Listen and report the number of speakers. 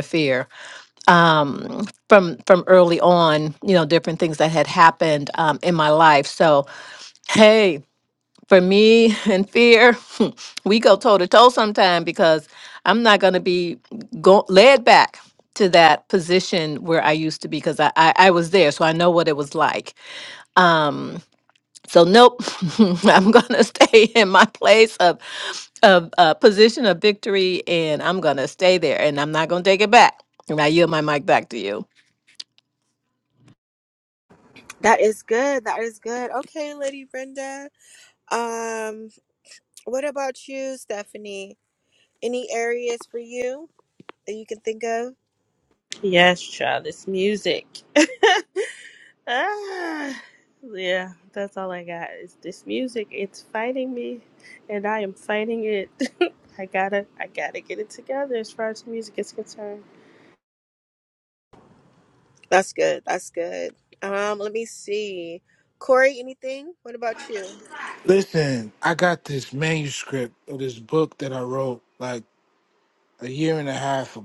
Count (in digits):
4